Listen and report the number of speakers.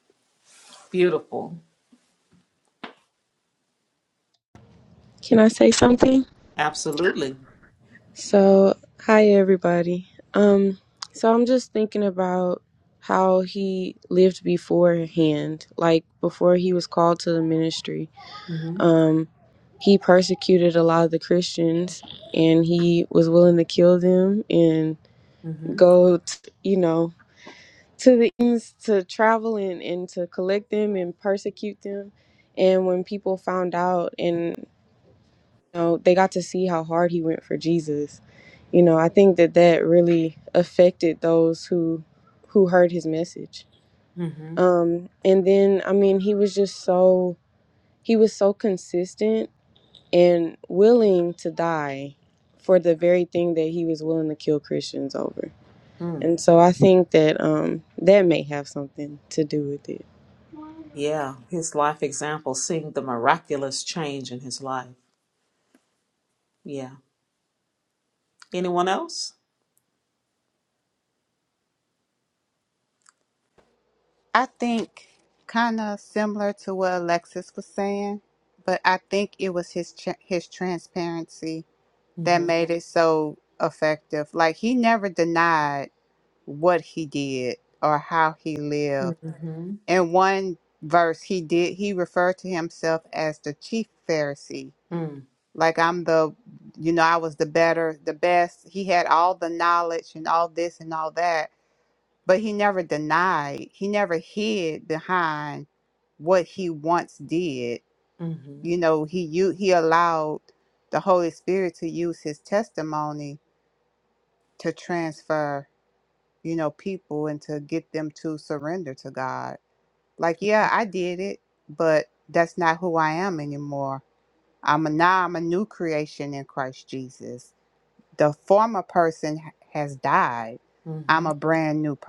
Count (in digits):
3